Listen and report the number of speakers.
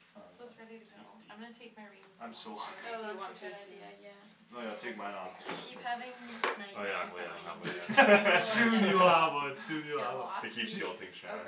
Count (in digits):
4